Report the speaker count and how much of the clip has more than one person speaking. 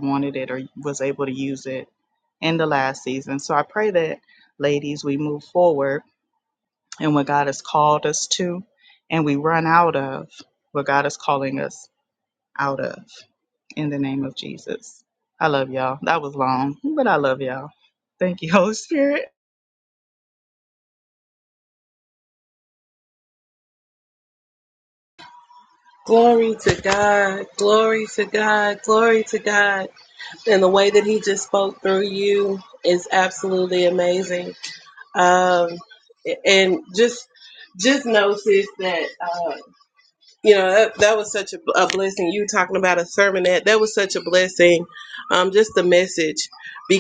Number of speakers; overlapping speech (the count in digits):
2, no overlap